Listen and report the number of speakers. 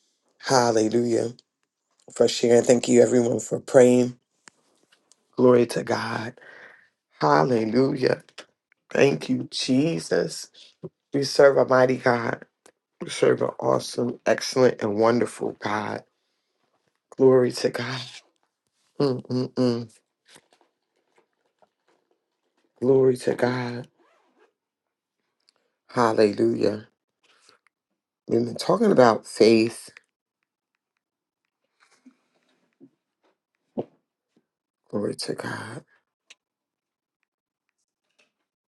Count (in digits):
1